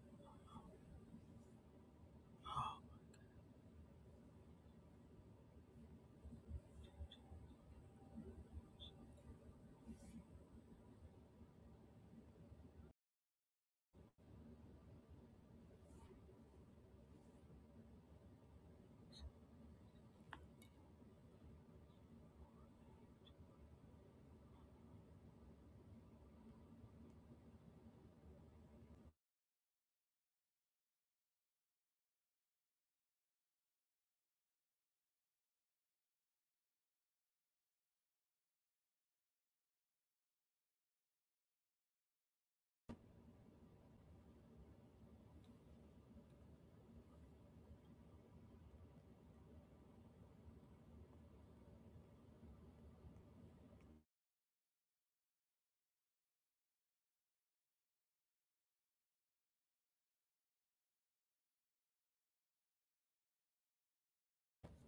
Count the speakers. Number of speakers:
0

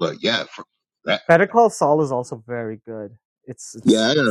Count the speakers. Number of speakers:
2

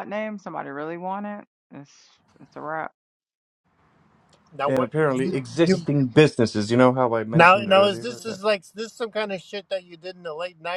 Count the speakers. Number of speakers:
3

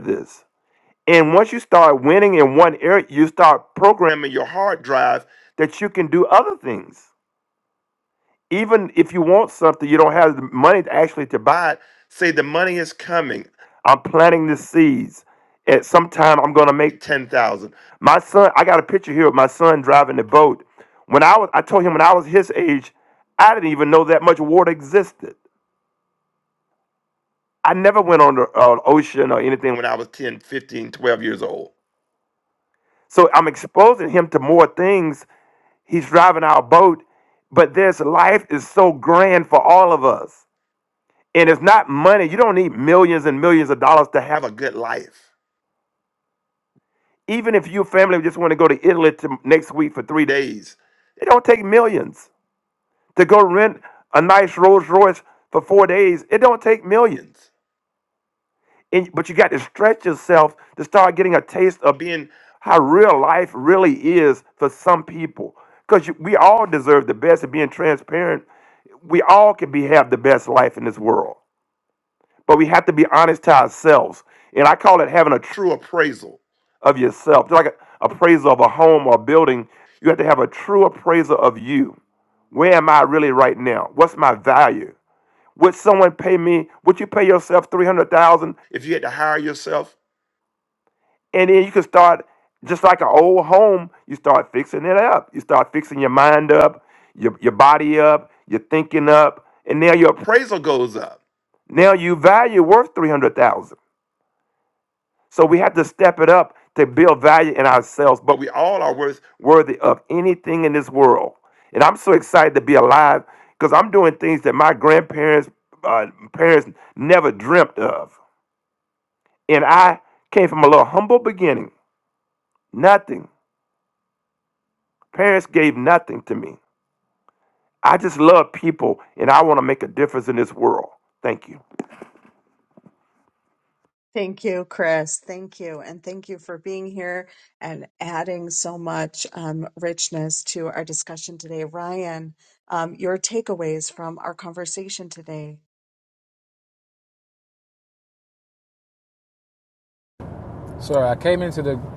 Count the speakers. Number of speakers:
3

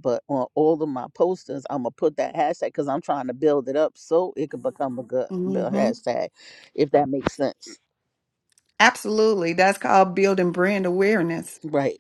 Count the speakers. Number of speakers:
2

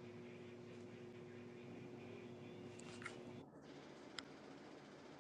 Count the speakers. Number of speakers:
0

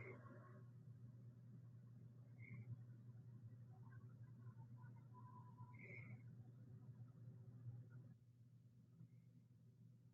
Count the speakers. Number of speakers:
0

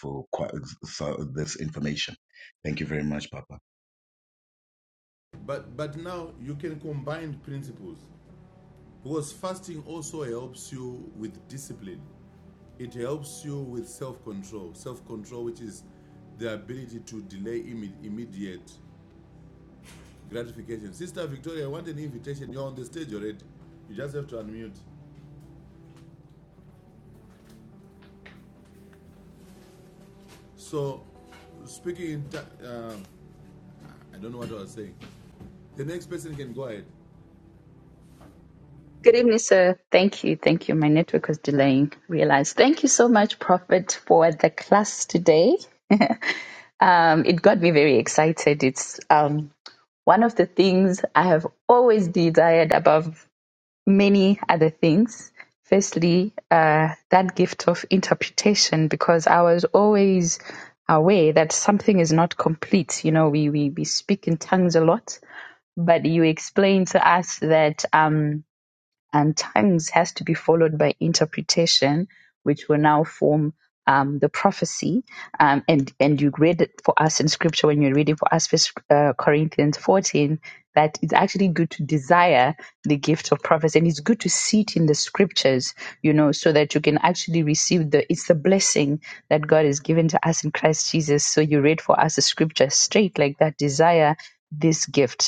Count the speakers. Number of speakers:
3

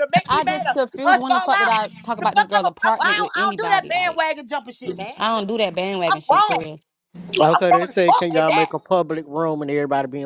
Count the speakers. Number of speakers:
3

